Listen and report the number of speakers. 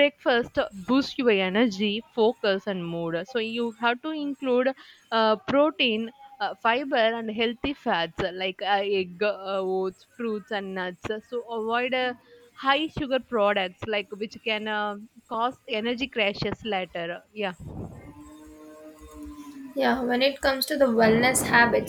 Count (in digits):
2